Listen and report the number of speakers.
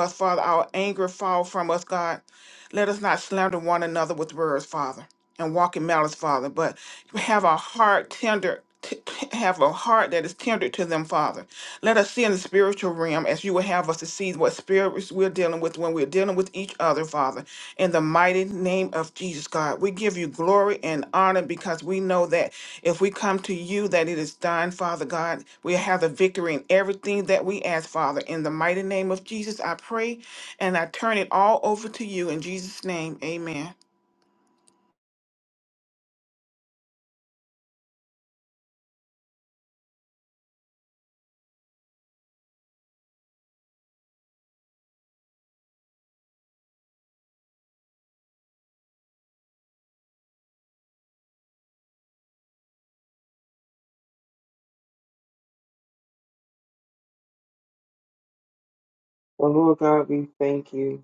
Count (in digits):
2